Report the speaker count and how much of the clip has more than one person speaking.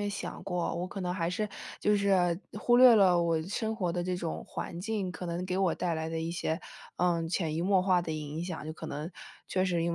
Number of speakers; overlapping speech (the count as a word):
one, no overlap